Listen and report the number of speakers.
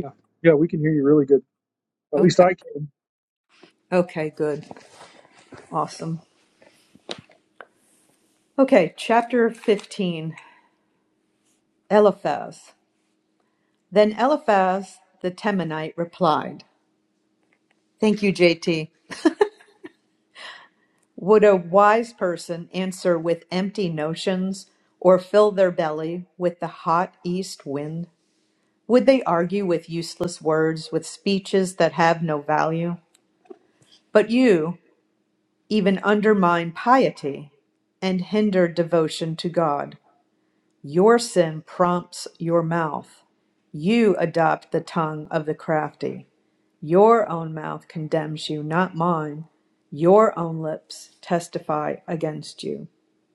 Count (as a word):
two